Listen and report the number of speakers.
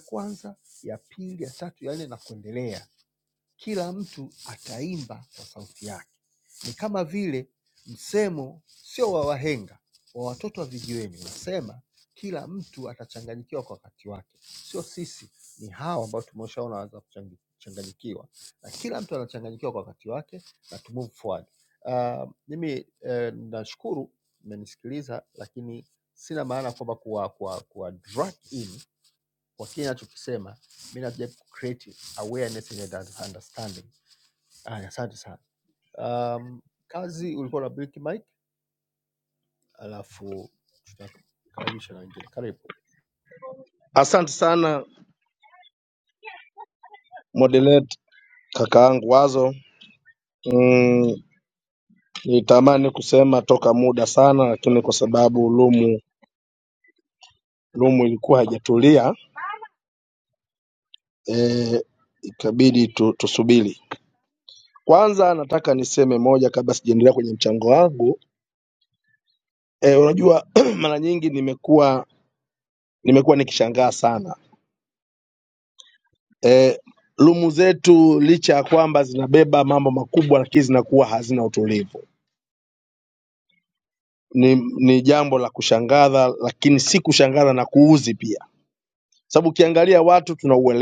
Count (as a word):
two